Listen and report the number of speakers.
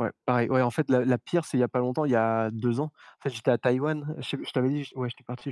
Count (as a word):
one